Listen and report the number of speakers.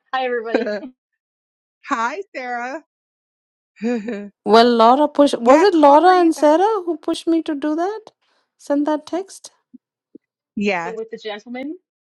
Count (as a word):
three